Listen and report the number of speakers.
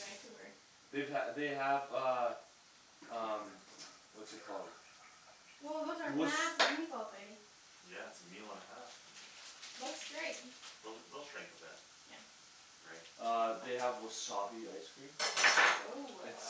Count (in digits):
3